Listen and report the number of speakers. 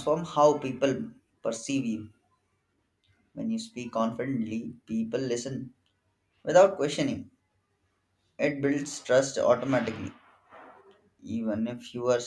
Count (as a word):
one